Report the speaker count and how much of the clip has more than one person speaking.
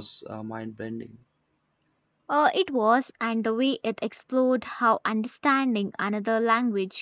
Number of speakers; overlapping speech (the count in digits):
2, no overlap